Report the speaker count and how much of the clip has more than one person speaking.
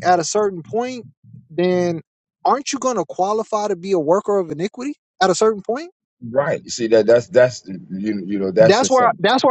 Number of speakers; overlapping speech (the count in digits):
2, about 5%